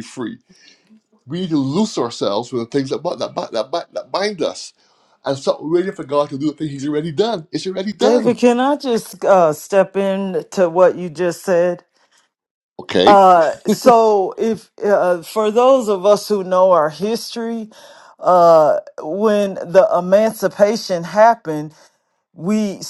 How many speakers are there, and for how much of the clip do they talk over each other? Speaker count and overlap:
2, about 2%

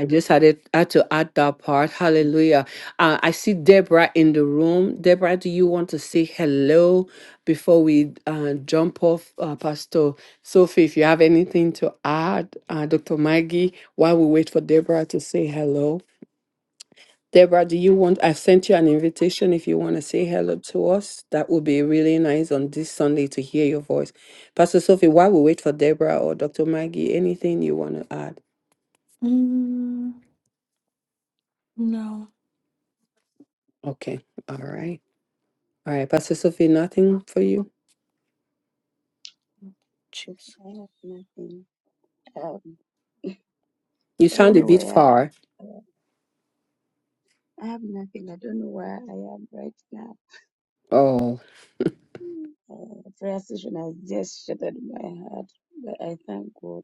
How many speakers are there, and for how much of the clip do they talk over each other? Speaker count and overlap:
3, about 2%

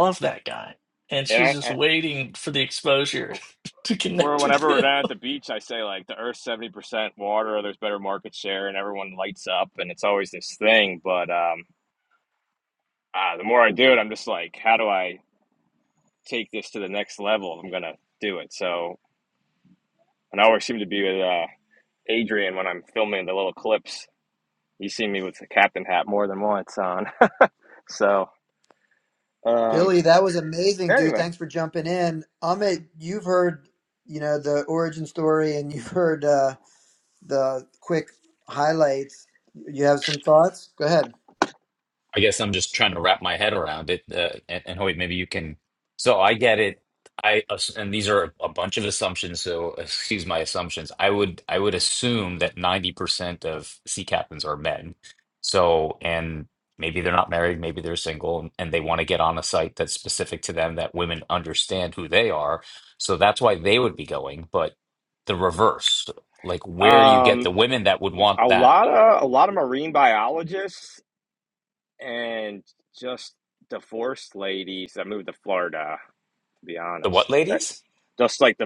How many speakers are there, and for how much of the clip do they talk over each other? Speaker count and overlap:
4, about 4%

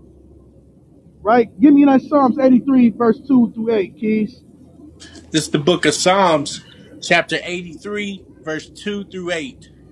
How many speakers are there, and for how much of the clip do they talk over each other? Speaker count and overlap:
2, no overlap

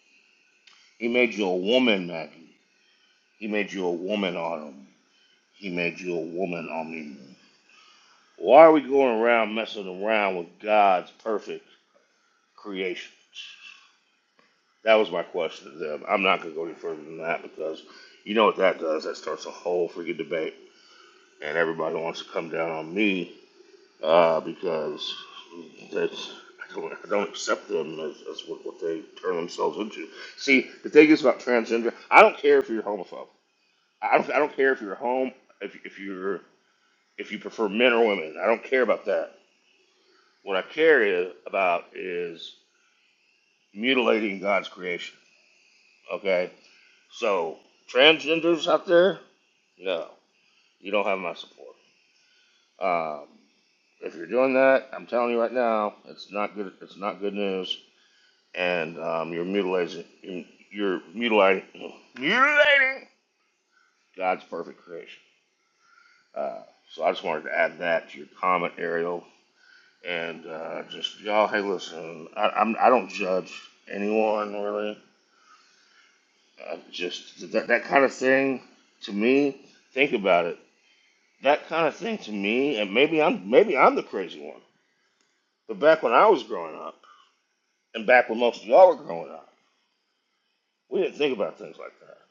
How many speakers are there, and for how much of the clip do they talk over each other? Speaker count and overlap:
1, no overlap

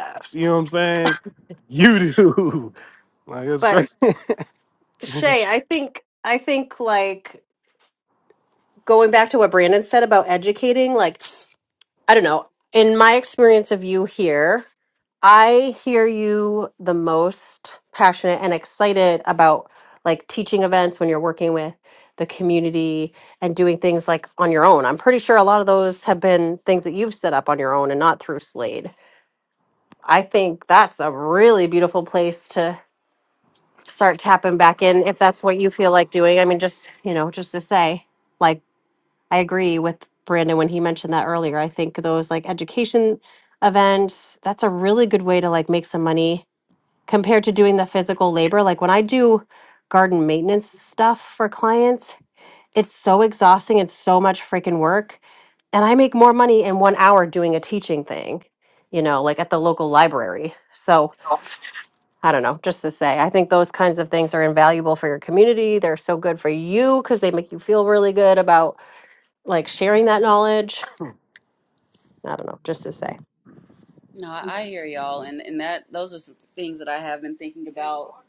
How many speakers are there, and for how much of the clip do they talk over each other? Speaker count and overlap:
3, under 1%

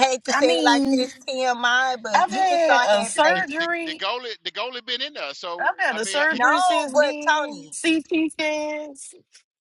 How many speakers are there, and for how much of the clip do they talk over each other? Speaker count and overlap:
3, about 50%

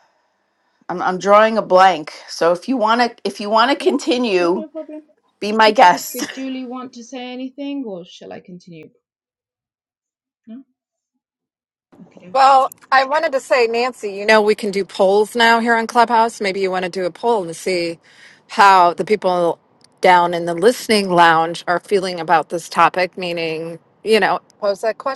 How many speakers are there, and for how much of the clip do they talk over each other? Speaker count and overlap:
3, about 3%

